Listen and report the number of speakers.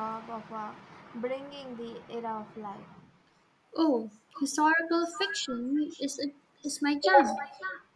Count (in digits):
2